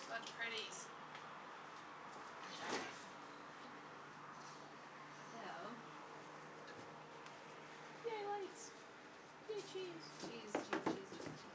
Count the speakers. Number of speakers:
2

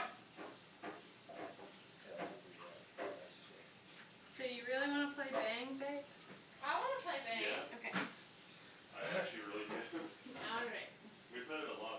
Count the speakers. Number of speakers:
4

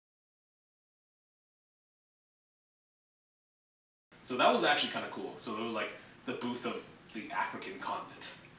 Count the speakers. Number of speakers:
1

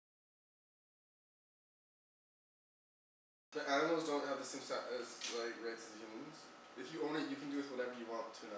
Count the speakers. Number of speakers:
1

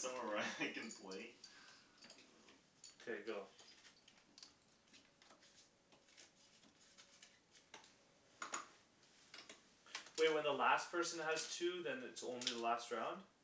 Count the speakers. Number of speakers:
2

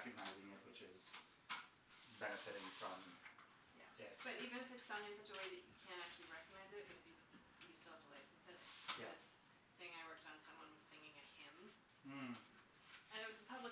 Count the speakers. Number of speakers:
2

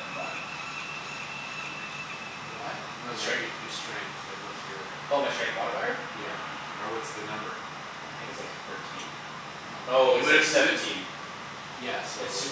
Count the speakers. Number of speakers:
2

